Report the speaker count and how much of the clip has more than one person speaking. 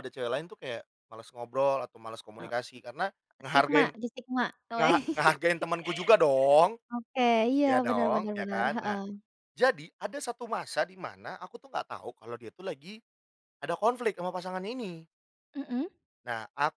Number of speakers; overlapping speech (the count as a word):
two, about 12%